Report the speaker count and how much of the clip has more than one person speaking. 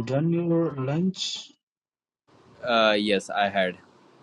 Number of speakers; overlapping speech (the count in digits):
2, no overlap